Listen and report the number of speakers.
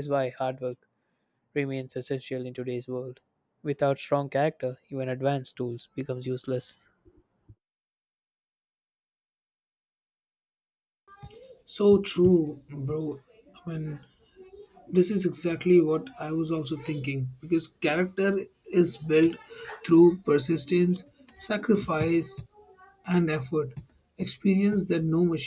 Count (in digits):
2